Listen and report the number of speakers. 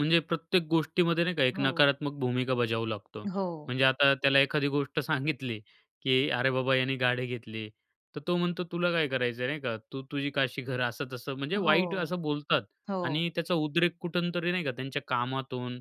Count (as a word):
two